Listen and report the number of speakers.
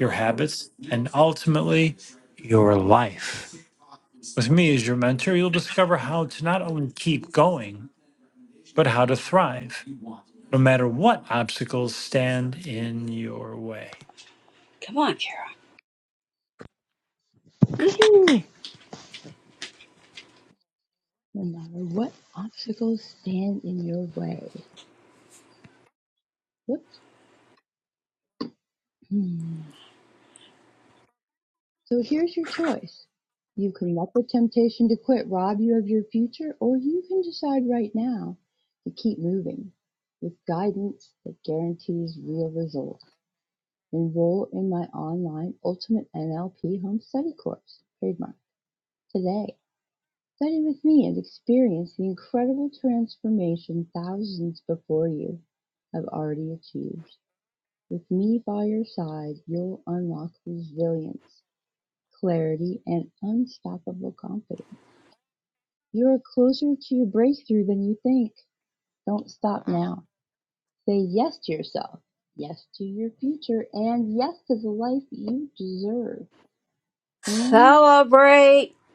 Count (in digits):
3